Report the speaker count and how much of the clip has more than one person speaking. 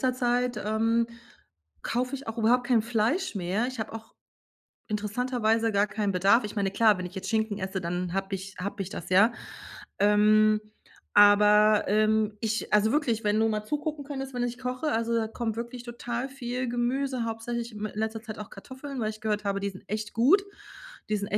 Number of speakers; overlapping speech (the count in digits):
1, no overlap